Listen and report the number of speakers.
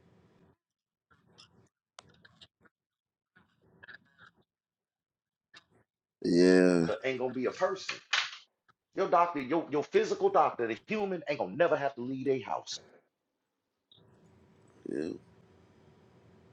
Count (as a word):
two